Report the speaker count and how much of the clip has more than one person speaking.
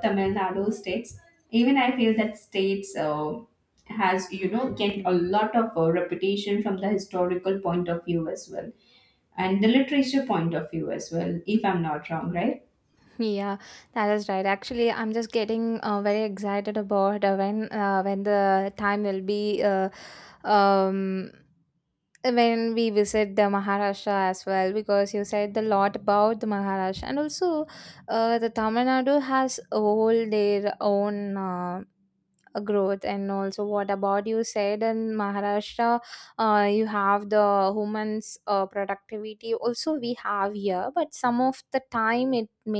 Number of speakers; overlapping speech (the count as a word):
two, no overlap